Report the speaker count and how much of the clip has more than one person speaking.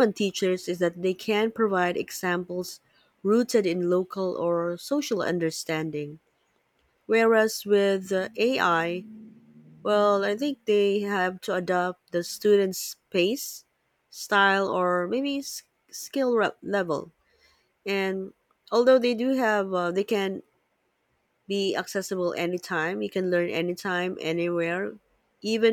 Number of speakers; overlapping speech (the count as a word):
one, no overlap